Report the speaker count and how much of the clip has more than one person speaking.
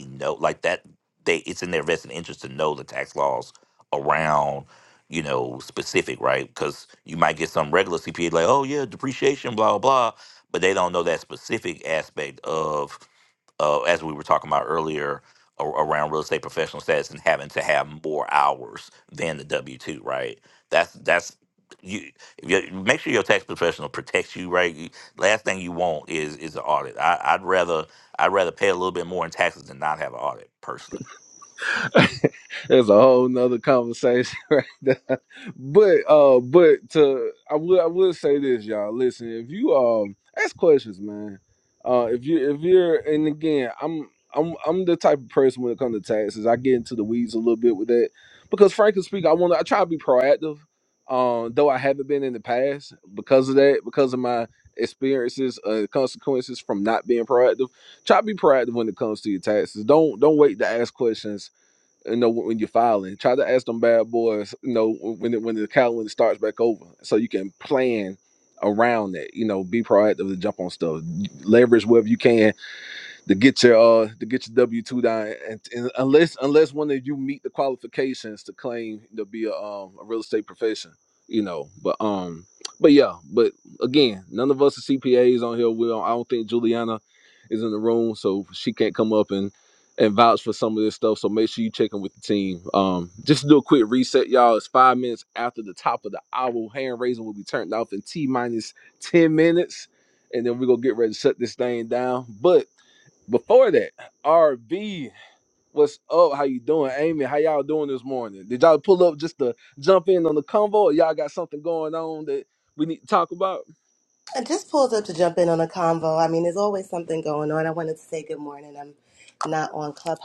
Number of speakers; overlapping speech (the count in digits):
3, no overlap